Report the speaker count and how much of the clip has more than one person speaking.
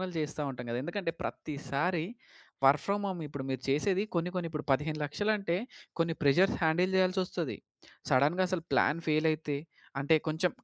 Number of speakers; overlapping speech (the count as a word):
one, no overlap